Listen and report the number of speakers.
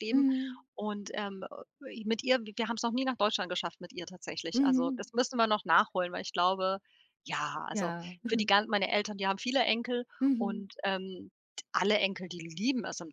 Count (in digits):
2